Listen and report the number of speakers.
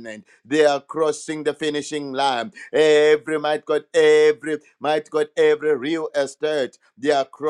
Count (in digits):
1